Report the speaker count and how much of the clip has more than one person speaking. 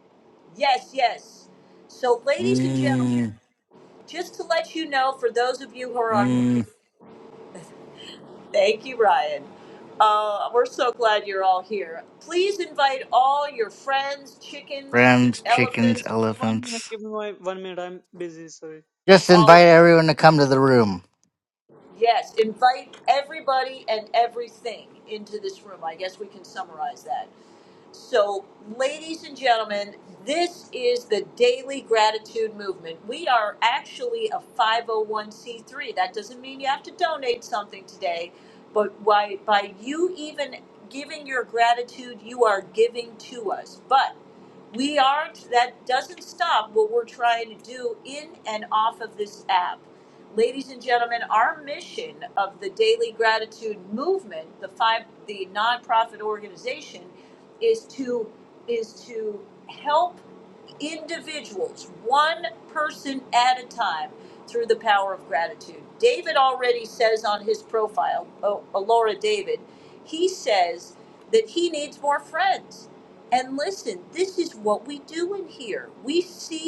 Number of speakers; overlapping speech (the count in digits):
3, about 3%